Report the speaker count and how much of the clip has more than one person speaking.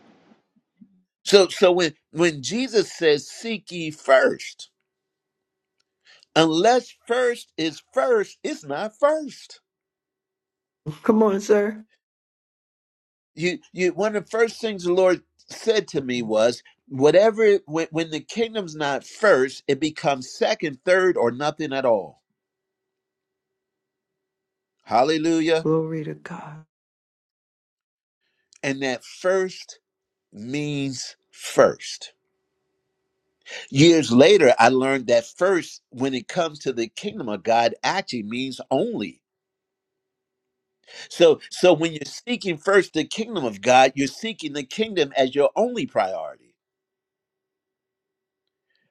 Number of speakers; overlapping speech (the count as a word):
two, no overlap